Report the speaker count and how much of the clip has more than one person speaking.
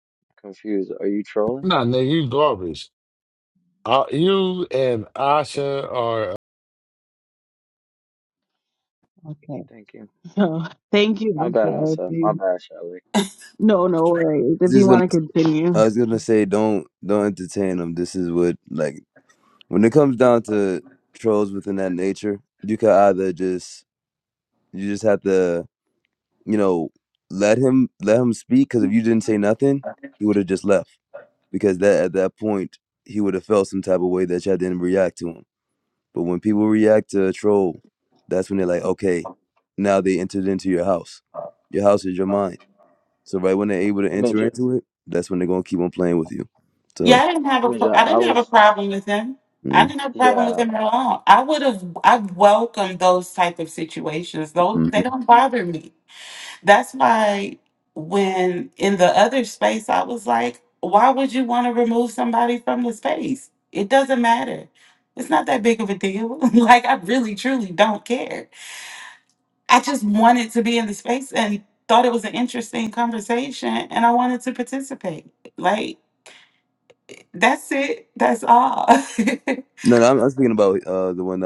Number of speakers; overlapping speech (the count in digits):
5, about 5%